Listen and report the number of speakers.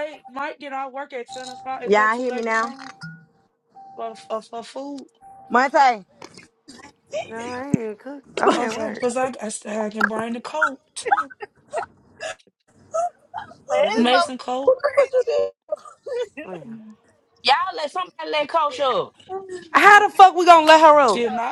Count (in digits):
4